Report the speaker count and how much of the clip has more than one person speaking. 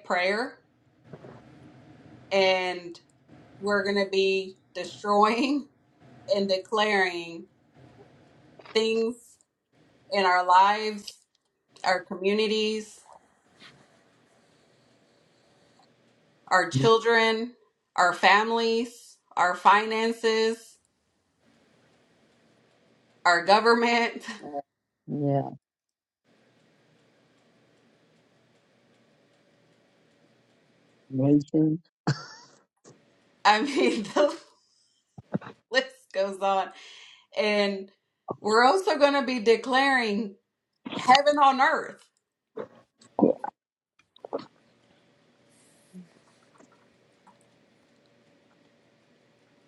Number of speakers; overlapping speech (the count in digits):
2, under 1%